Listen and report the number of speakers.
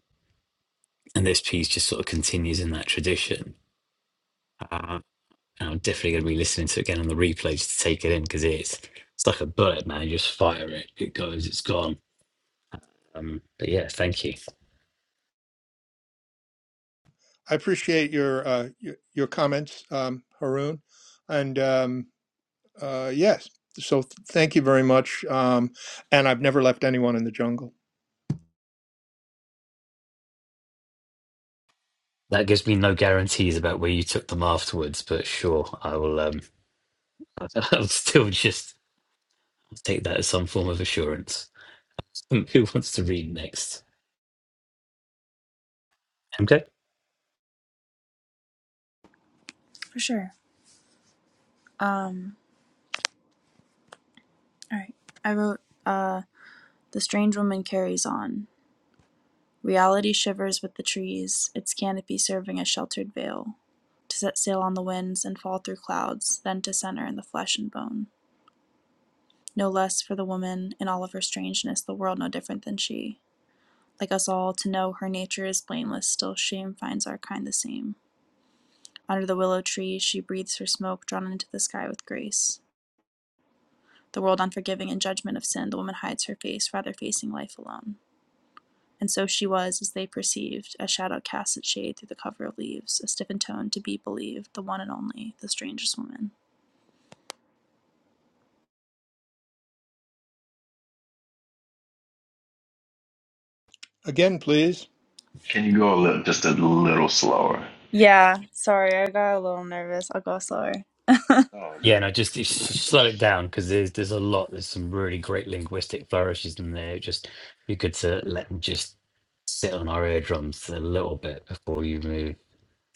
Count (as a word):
four